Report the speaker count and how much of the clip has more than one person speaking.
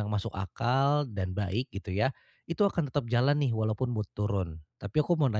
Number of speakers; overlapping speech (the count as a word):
one, no overlap